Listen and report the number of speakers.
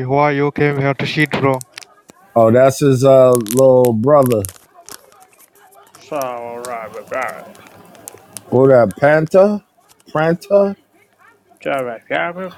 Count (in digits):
3